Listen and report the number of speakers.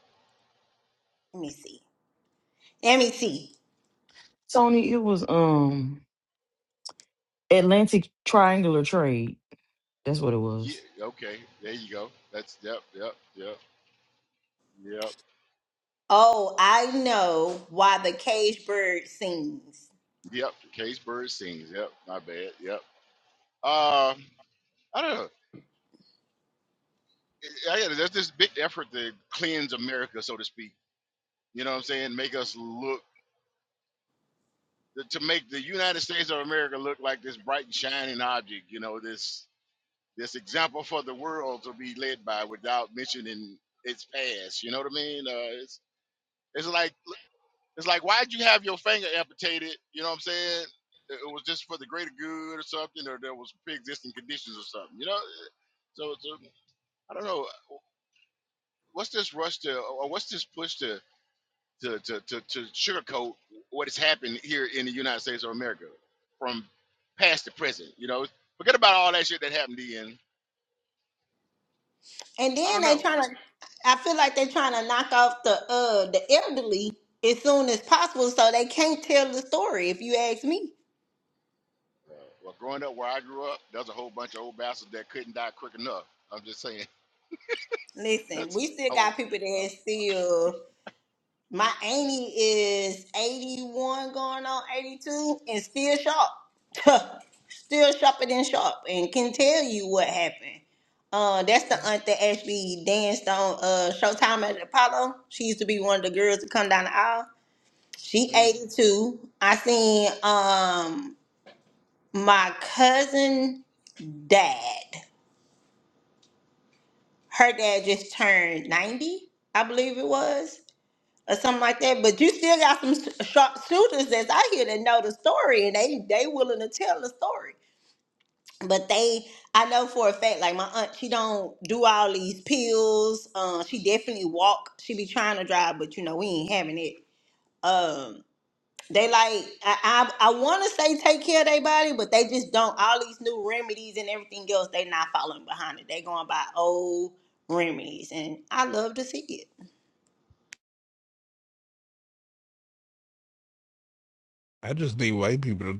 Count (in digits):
4